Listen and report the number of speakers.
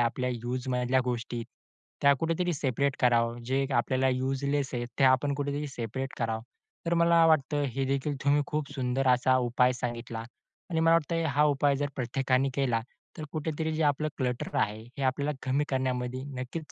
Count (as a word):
one